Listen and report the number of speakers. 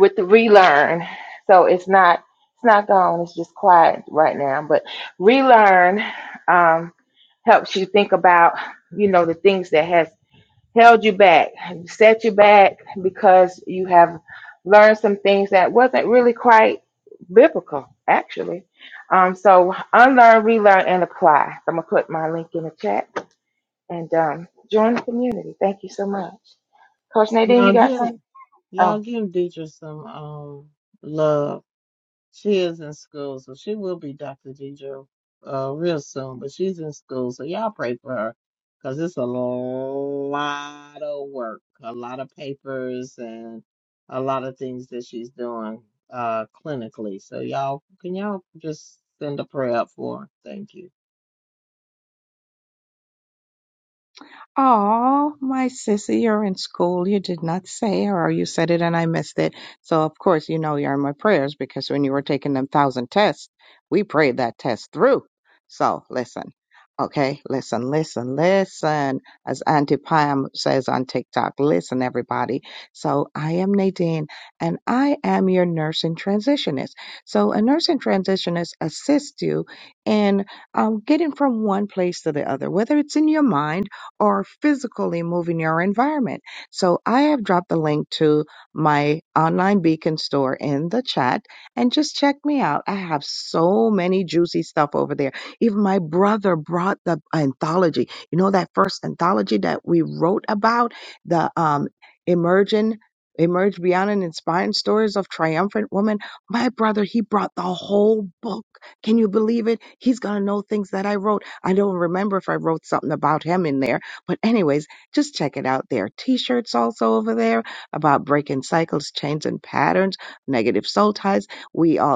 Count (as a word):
three